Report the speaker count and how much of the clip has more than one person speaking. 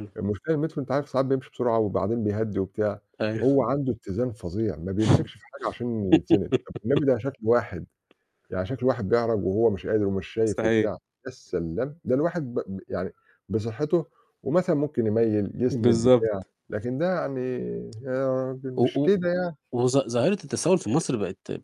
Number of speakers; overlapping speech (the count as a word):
two, about 8%